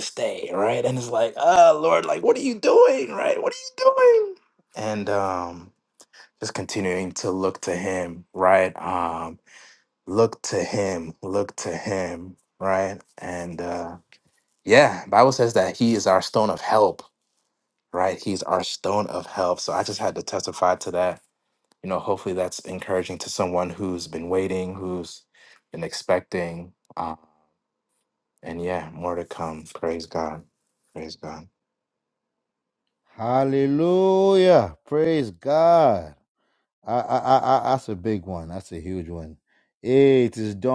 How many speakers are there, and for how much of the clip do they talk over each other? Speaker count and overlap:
two, no overlap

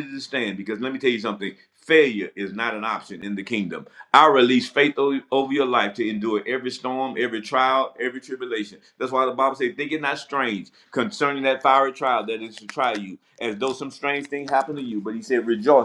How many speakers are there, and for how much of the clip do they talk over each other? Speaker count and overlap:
one, no overlap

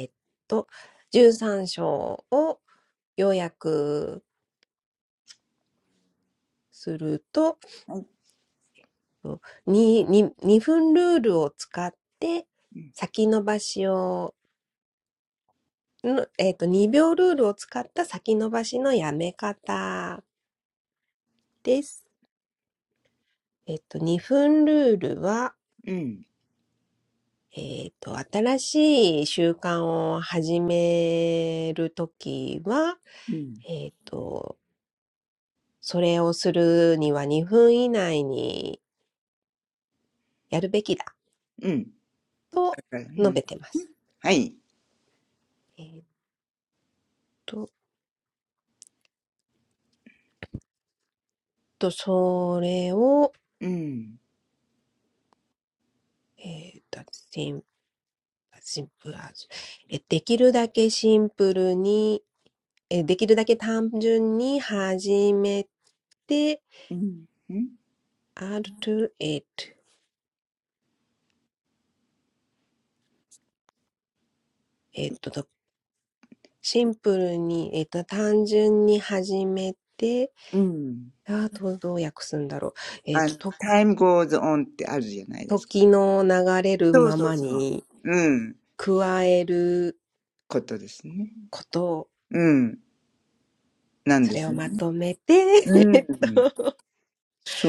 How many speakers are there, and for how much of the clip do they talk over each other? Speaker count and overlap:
two, about 2%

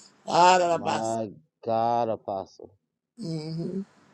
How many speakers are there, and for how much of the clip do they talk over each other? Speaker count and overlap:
two, about 8%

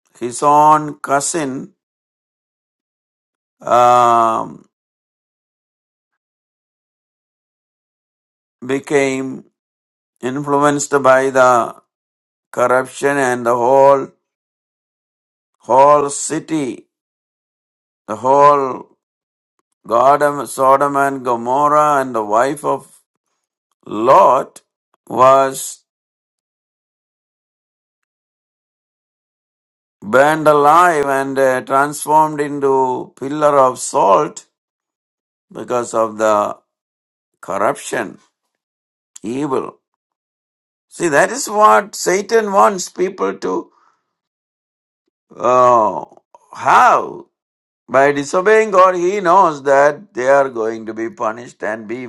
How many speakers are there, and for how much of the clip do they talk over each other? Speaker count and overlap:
one, no overlap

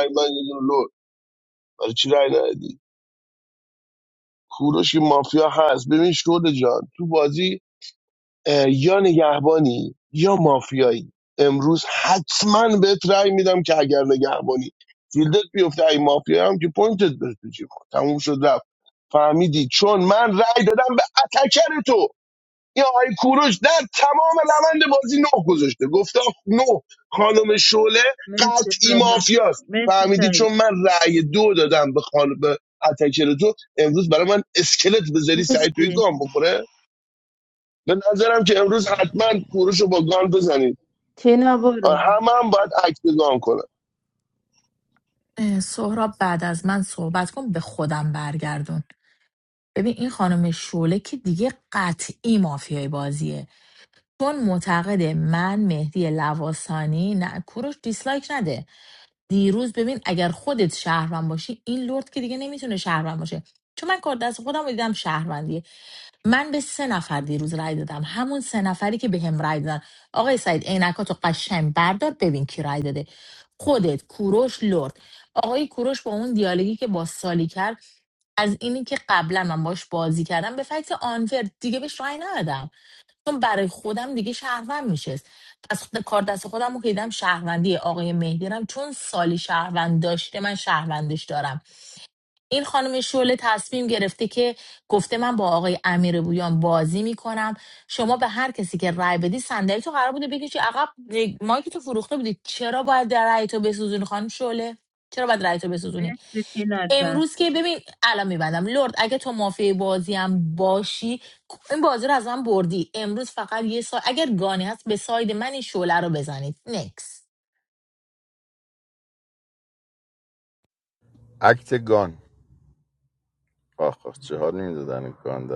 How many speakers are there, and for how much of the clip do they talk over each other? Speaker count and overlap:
four, about 2%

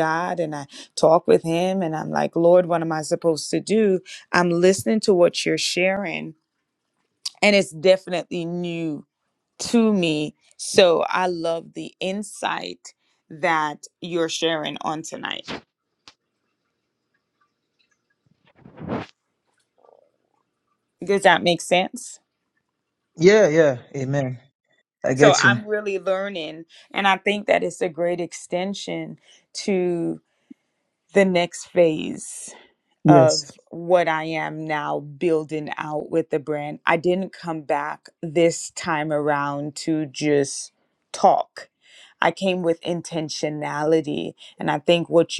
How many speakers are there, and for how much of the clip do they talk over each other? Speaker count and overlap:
two, about 1%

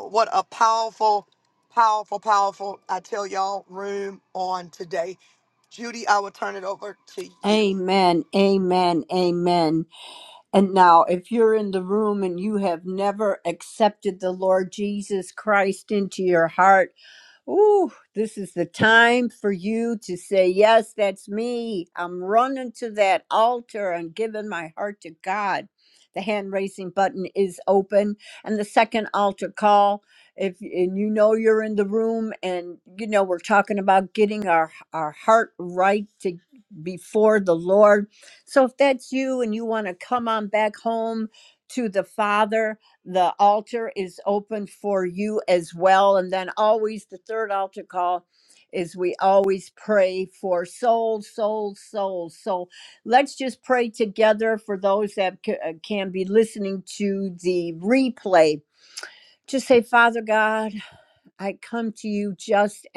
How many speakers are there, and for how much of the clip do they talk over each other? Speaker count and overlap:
two, about 1%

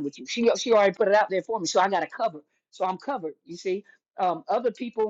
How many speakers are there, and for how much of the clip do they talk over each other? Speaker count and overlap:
one, no overlap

